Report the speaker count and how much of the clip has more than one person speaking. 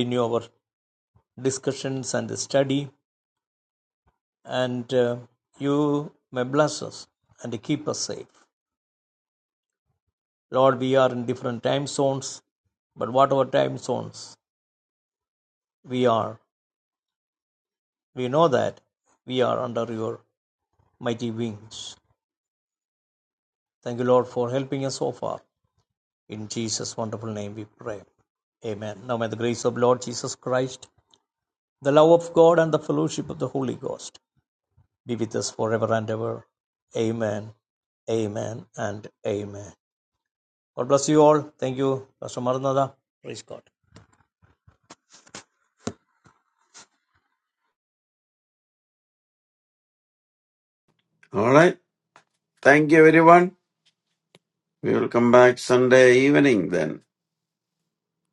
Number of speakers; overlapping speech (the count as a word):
two, no overlap